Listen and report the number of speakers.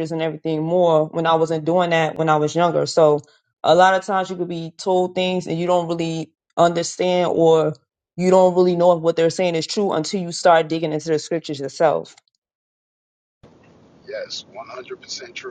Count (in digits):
2